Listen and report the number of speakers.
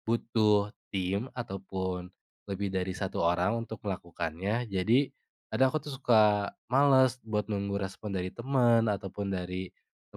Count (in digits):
1